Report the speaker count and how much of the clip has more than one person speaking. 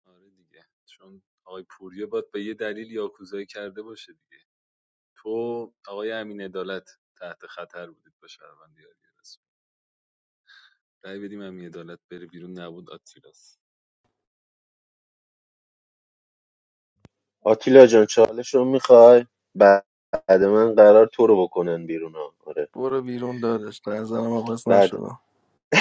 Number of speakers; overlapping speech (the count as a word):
three, about 1%